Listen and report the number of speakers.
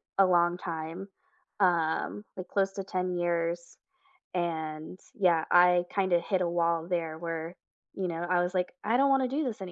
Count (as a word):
one